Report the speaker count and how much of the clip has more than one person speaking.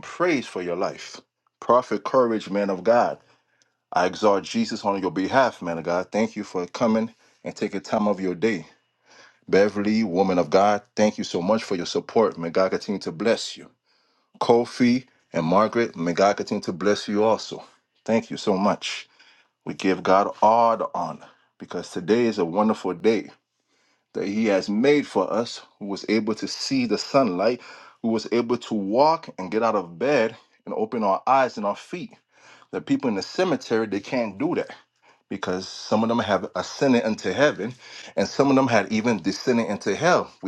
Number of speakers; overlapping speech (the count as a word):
one, no overlap